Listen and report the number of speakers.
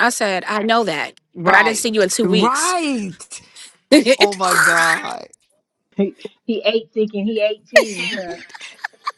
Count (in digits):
3